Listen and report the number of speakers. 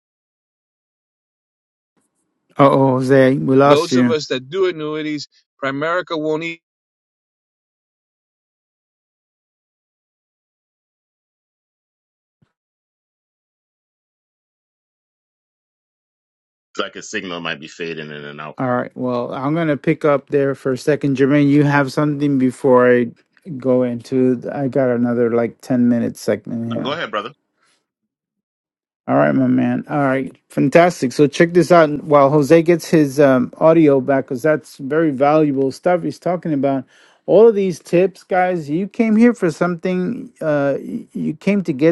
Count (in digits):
3